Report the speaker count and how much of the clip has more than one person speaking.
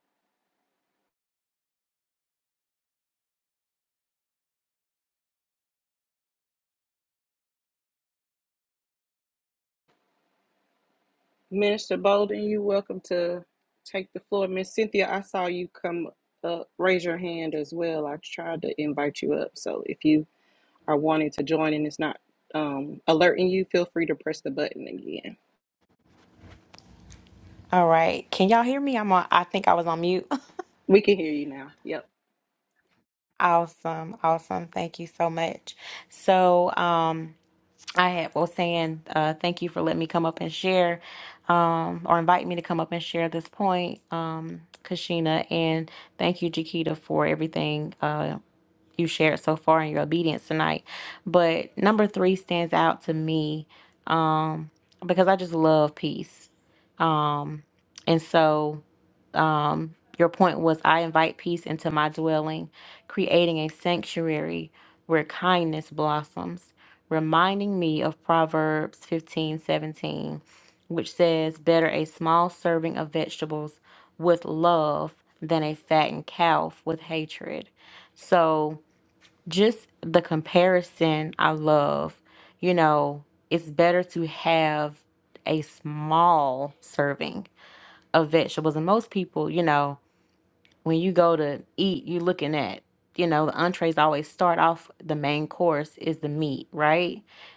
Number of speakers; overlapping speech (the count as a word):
two, no overlap